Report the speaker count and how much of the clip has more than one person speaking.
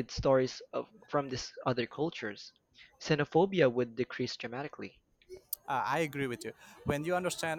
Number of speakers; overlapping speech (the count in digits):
2, no overlap